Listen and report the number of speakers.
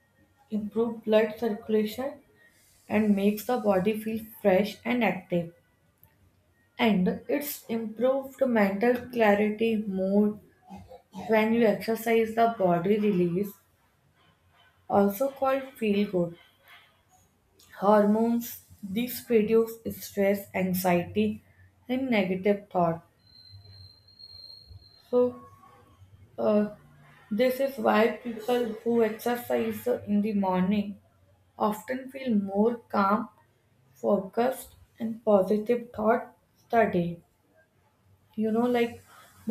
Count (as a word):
one